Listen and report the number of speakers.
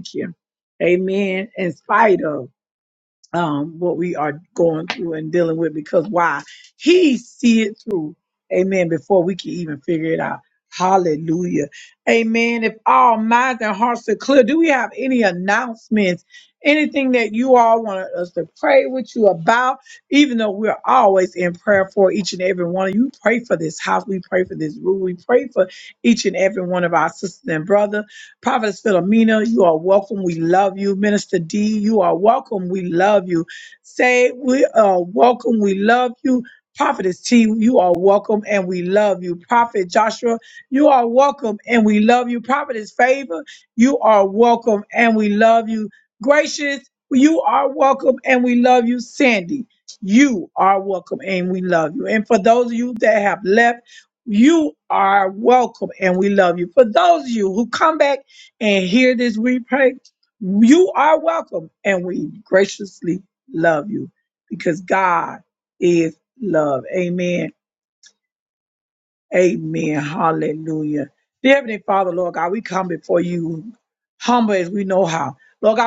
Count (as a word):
one